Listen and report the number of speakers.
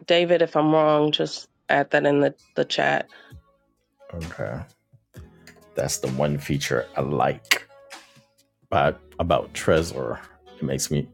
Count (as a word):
two